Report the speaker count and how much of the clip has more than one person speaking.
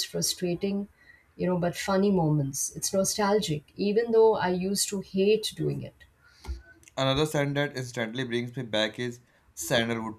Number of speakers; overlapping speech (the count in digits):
2, no overlap